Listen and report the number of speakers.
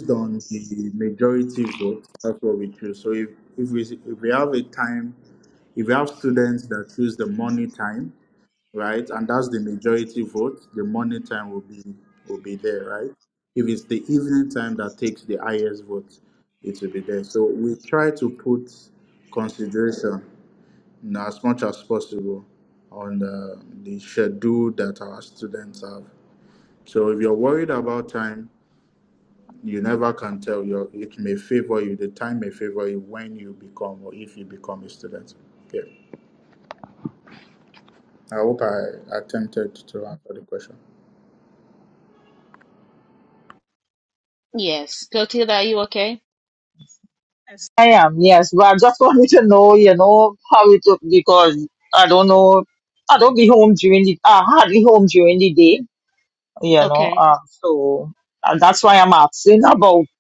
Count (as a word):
three